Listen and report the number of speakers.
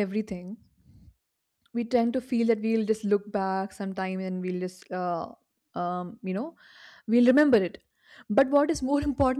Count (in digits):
1